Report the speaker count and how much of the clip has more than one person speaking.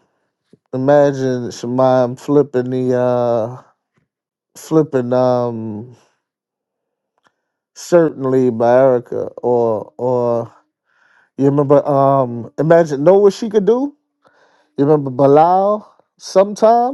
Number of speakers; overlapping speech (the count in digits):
1, no overlap